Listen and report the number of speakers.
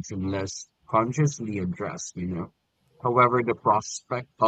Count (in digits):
1